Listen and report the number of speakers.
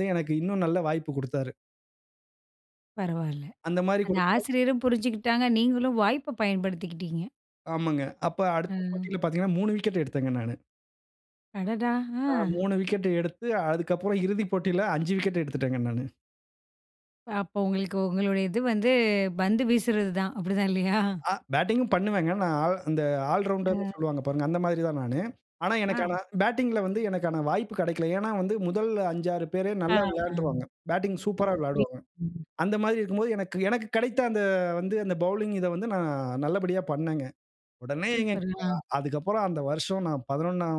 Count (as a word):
two